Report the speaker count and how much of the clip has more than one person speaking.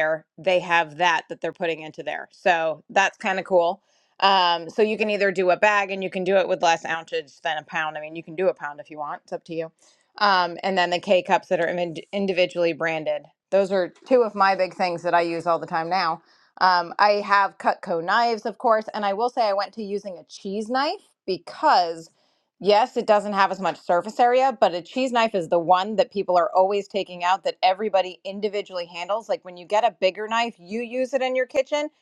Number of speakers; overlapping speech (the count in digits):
1, no overlap